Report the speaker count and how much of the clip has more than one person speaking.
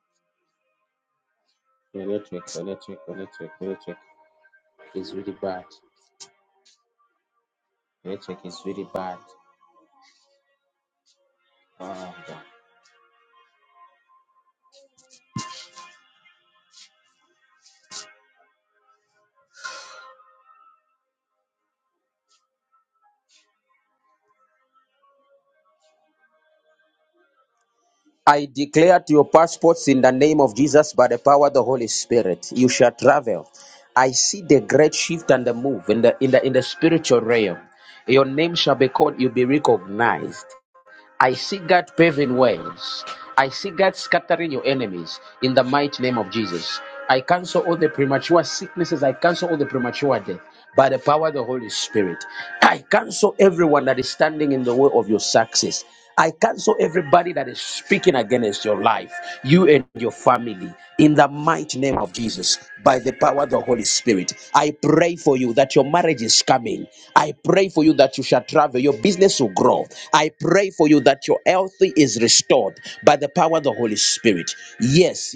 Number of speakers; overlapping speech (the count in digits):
1, no overlap